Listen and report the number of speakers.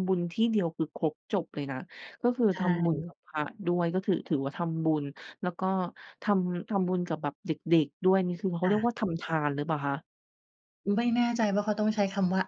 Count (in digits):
2